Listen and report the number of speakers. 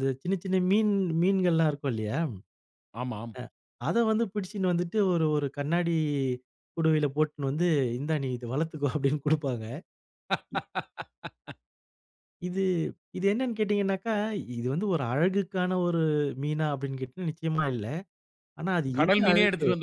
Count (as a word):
two